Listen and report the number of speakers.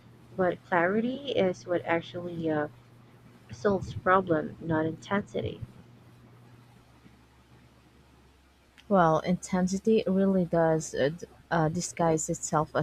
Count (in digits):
2